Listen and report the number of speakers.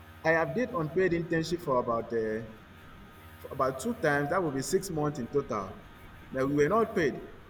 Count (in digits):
1